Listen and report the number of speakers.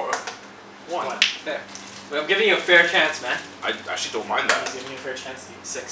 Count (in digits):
3